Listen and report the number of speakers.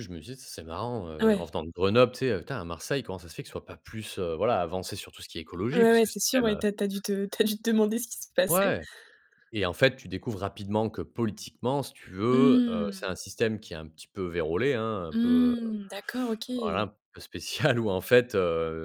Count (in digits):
2